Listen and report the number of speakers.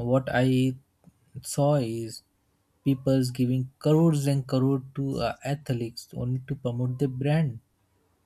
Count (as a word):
one